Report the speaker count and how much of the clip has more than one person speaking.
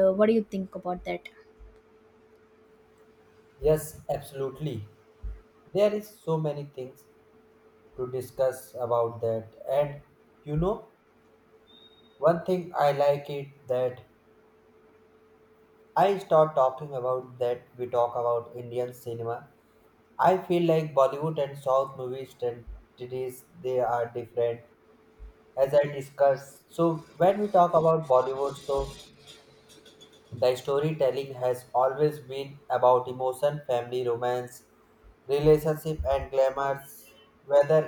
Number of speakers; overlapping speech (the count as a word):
two, no overlap